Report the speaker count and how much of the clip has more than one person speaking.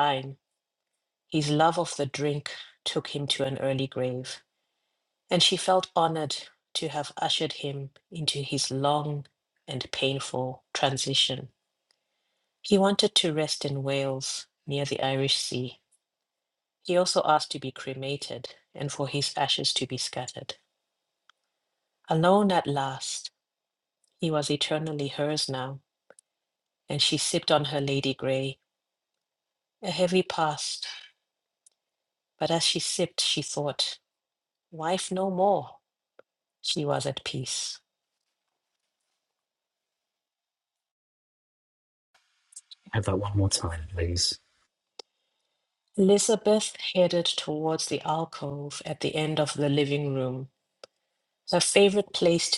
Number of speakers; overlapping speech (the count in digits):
2, no overlap